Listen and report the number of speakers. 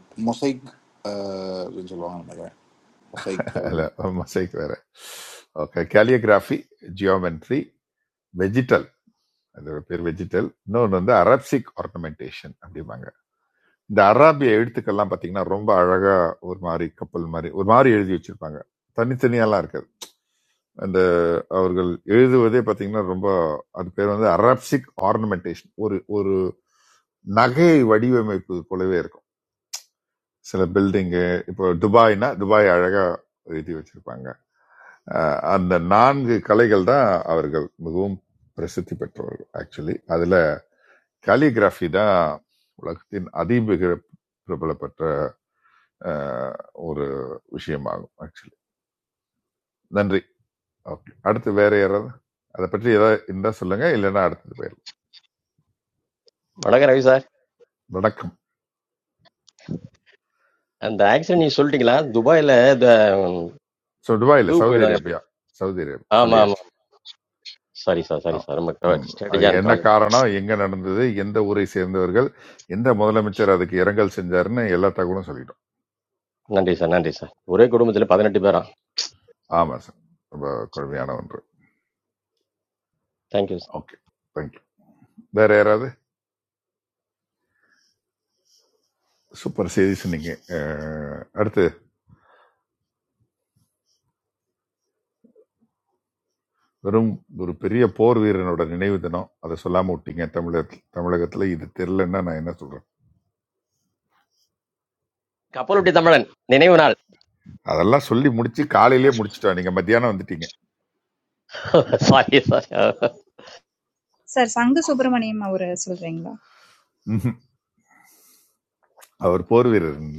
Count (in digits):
4